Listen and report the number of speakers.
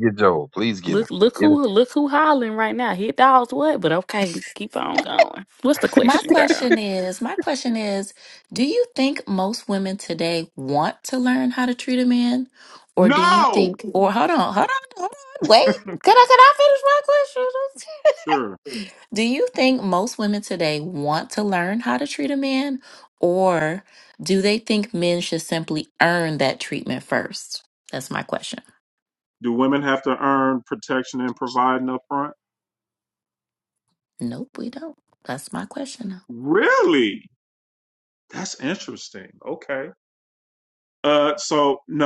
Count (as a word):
four